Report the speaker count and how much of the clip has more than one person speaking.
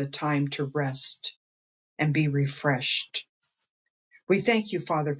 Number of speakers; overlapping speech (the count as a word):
one, no overlap